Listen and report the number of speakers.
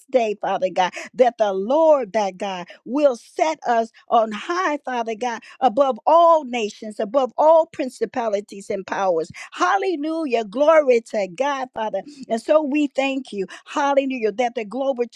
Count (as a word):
one